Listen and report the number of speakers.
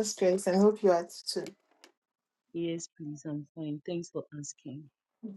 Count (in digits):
2